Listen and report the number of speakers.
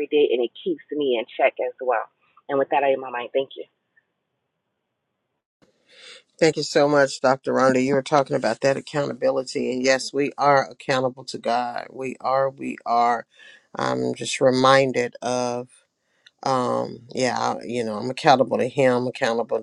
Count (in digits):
2